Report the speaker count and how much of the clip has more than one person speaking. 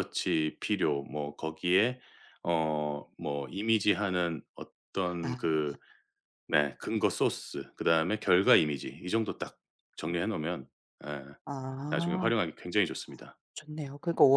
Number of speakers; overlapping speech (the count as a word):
two, about 4%